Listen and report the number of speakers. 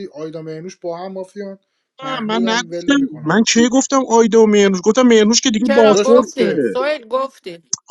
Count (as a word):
three